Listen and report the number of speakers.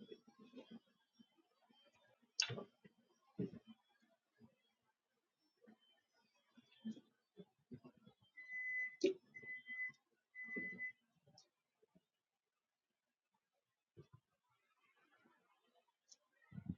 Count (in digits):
0